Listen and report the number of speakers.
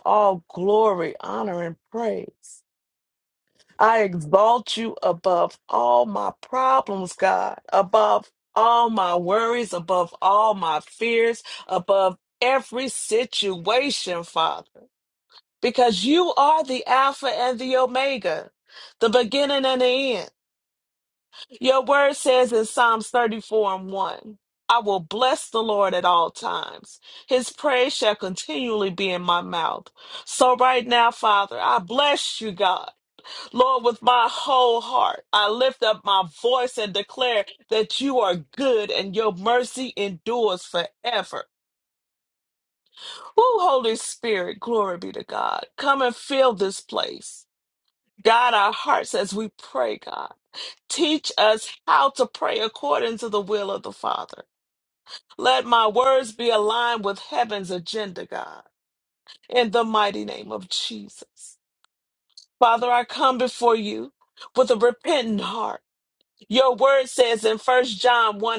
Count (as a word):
one